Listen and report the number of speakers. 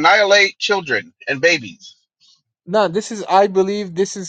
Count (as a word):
two